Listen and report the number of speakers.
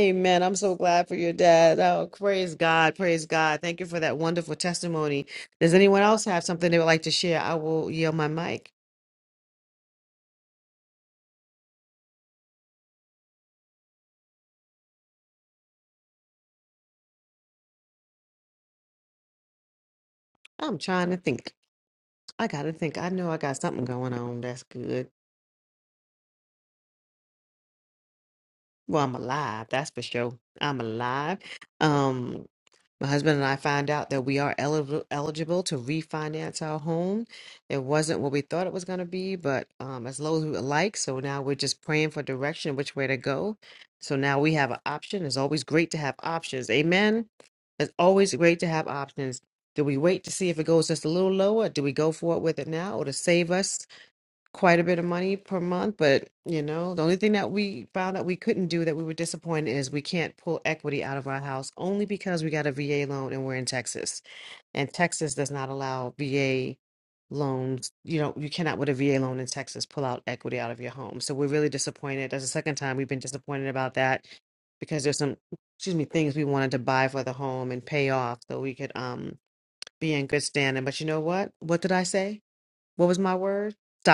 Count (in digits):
1